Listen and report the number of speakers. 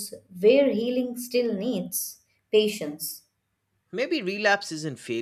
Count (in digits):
2